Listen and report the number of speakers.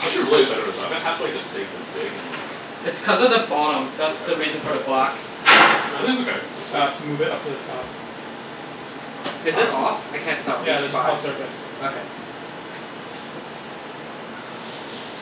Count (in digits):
3